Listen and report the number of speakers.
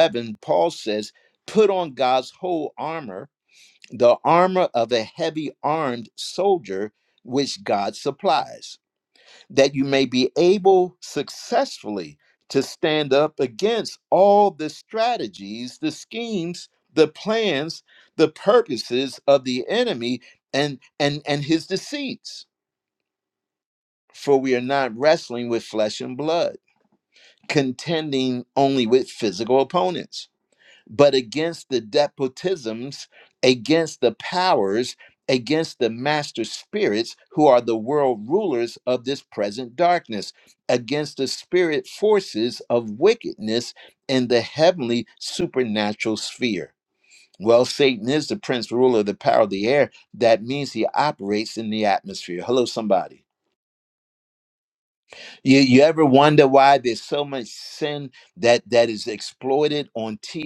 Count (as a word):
one